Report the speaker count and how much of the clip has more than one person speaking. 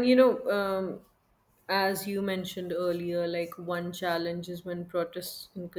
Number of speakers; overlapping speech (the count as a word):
one, no overlap